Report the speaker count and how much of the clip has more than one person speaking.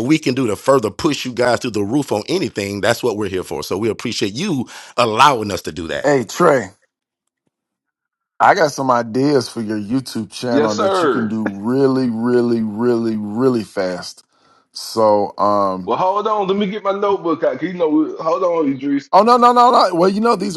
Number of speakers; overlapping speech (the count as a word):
three, about 4%